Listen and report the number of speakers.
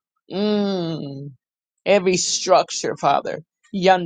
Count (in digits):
1